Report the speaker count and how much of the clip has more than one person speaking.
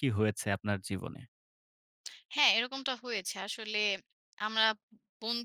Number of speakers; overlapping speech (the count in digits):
2, no overlap